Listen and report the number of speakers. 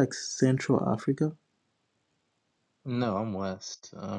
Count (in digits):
2